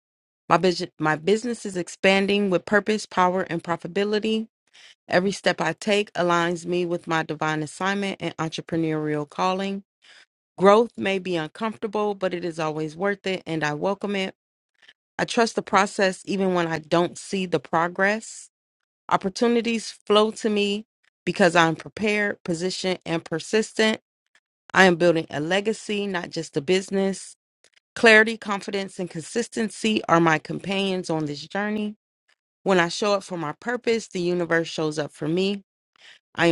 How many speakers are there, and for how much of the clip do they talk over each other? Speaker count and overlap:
1, no overlap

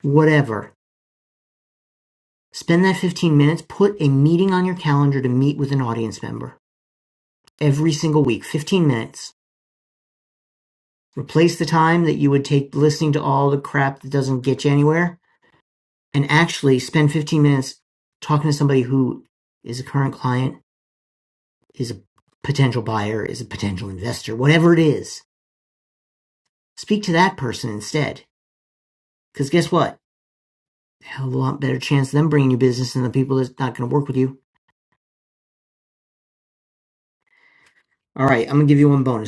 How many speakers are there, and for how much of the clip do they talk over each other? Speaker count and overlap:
1, no overlap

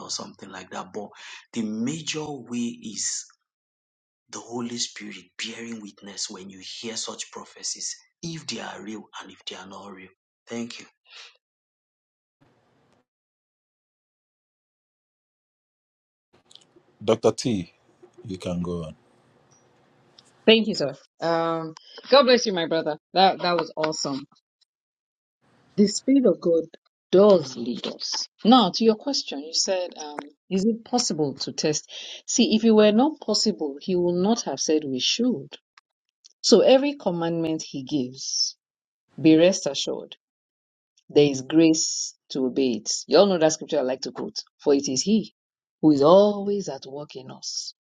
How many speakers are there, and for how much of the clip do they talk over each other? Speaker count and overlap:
3, no overlap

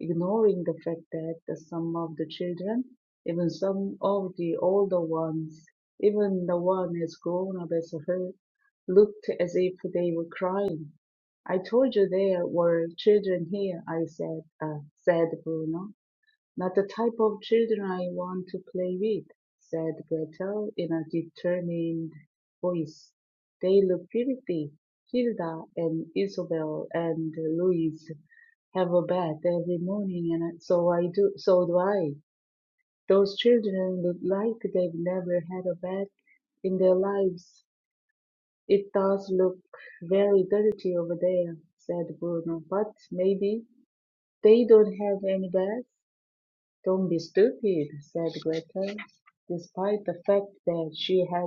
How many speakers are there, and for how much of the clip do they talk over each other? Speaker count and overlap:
1, no overlap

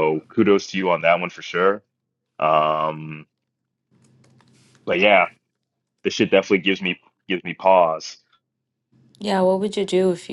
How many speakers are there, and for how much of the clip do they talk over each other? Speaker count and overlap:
2, no overlap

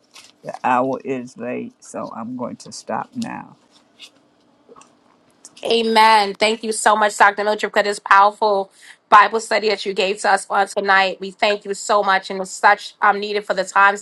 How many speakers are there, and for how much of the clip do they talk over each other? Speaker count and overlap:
2, no overlap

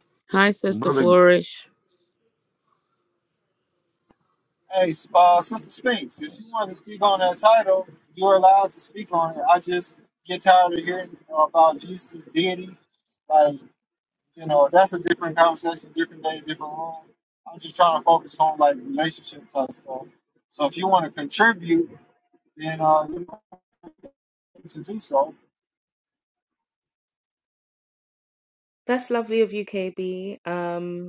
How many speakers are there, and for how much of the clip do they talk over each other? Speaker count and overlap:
3, no overlap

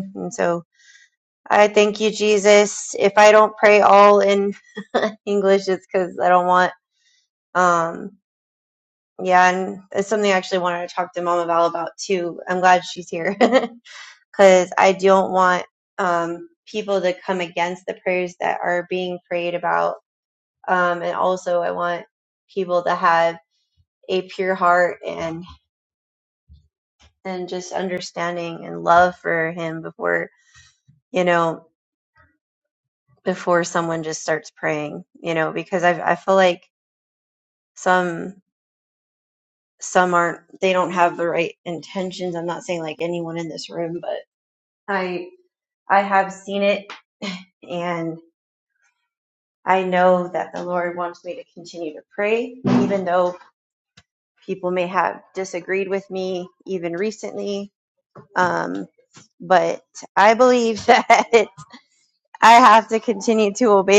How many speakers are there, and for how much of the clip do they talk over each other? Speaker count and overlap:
1, no overlap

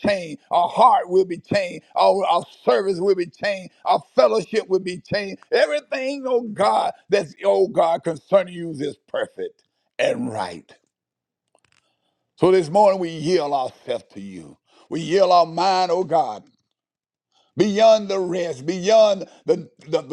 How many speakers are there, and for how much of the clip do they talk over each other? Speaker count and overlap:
1, no overlap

